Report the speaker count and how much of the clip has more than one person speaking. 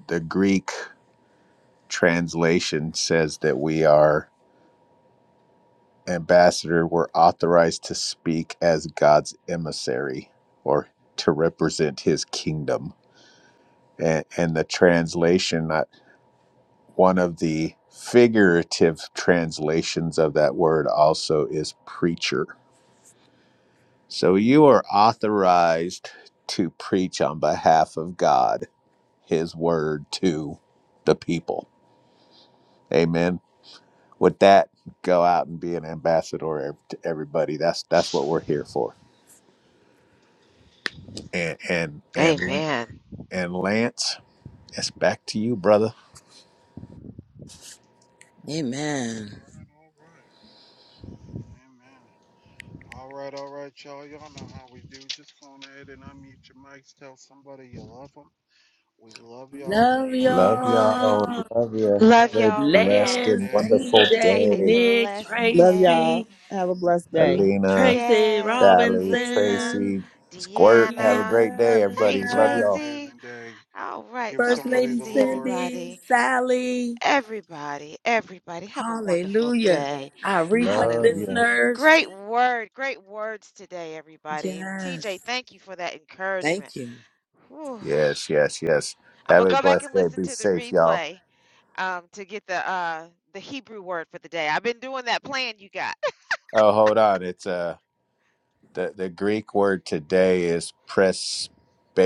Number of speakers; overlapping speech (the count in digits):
5, about 18%